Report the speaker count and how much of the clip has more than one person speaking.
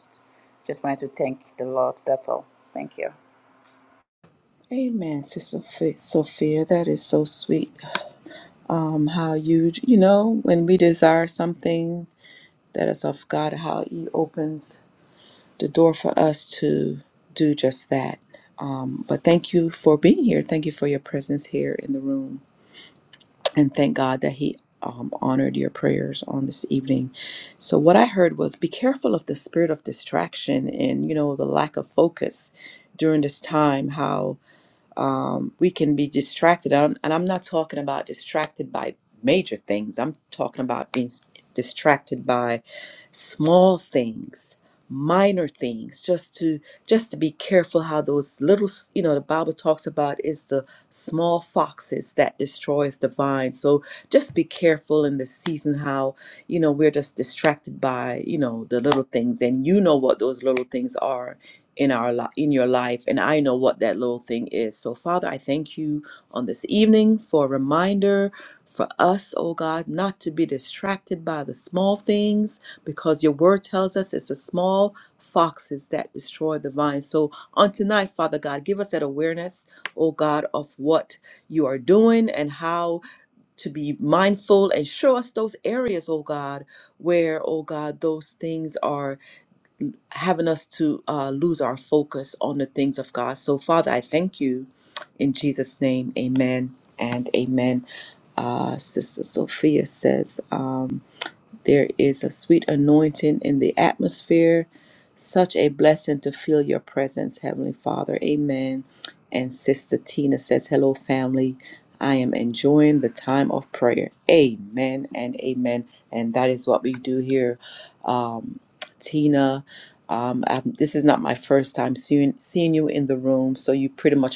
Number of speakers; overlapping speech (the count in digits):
2, no overlap